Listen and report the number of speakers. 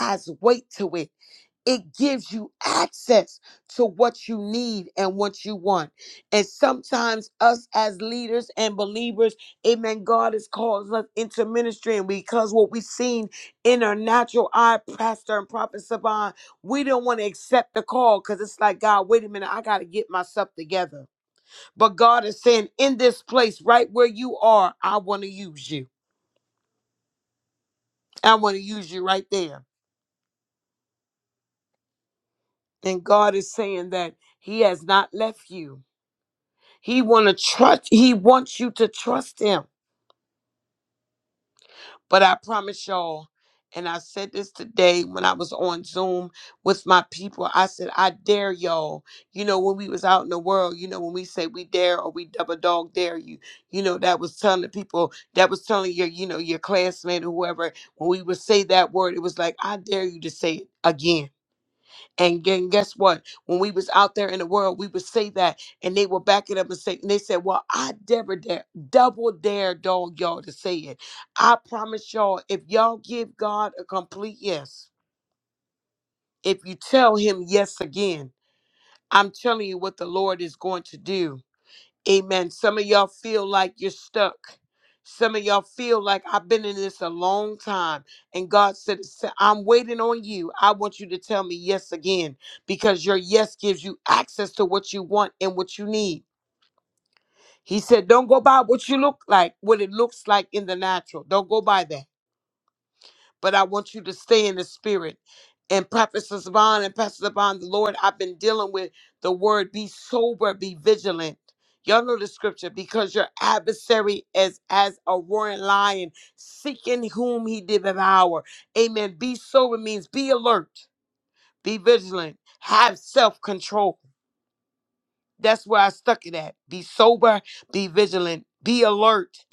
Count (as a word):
one